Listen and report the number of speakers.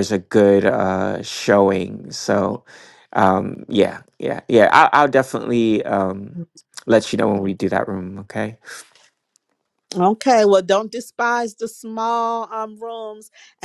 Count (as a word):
two